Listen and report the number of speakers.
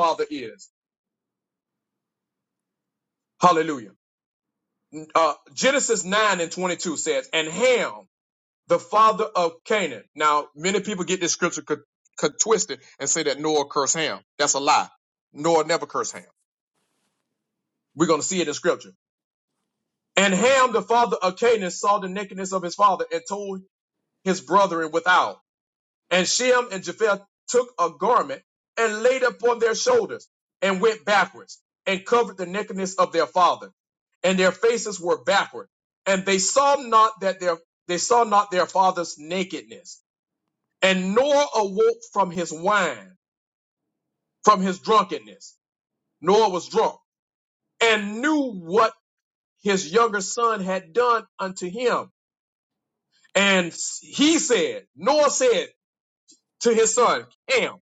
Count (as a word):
one